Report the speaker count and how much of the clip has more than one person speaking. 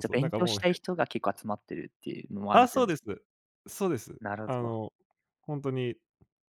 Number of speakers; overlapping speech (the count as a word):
two, about 20%